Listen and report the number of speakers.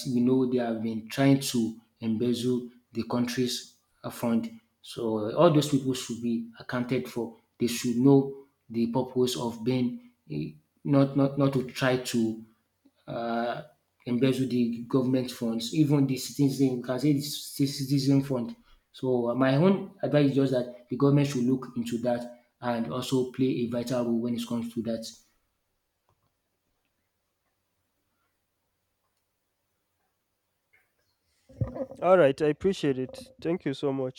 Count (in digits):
2